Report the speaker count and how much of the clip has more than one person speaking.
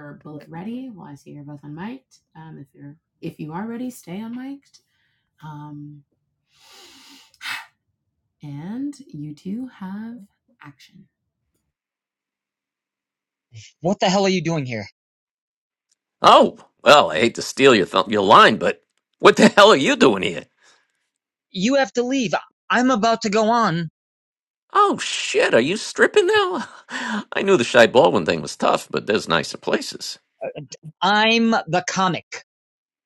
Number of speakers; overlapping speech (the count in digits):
3, no overlap